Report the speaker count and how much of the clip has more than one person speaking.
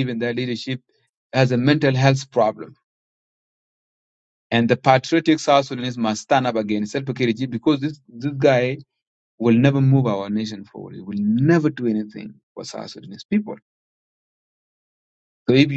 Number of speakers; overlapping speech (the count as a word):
one, no overlap